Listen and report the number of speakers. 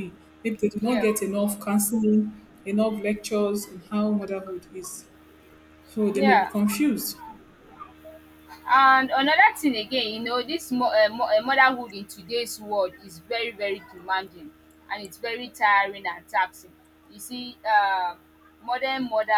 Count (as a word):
two